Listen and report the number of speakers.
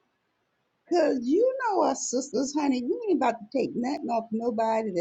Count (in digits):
1